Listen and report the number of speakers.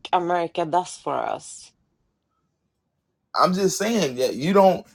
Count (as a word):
two